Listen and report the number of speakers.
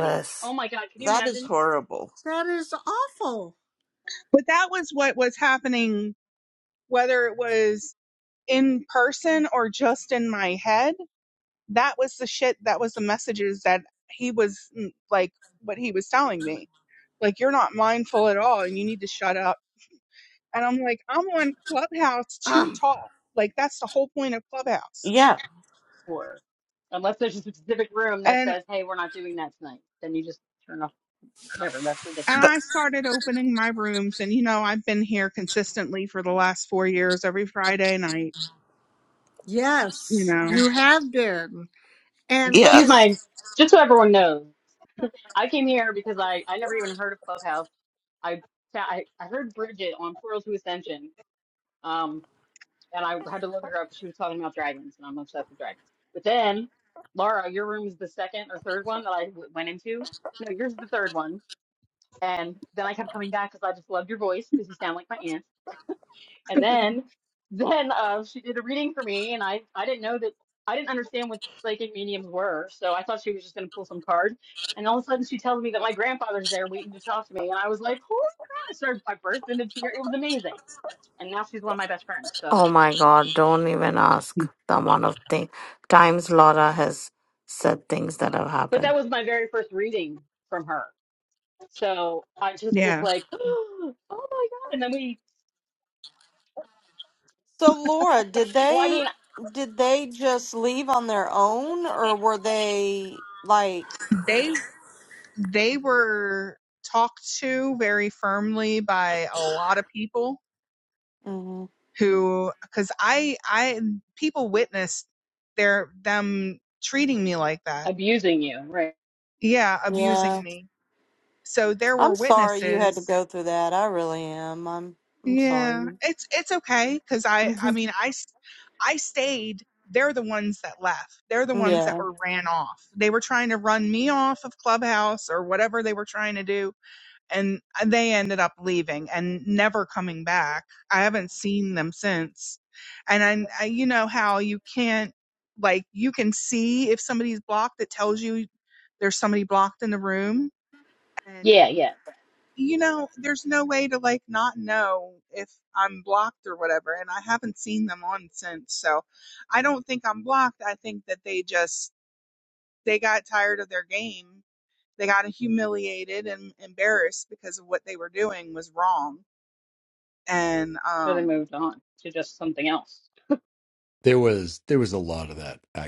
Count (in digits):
7